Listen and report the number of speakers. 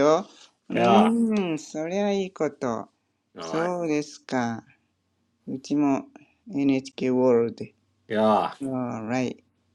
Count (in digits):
2